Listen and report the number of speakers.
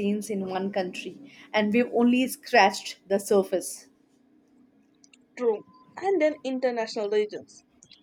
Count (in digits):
2